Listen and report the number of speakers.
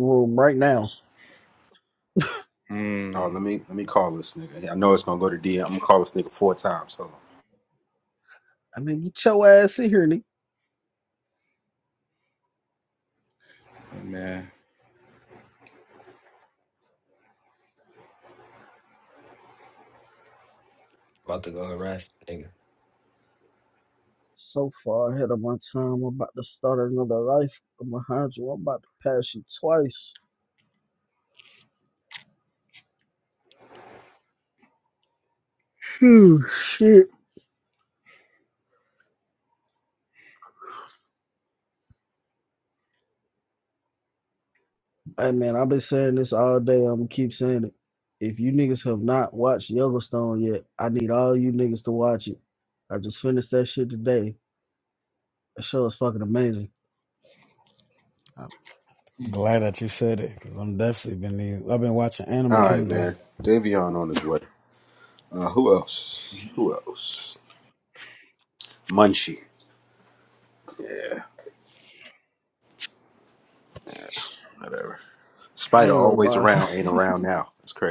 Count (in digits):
5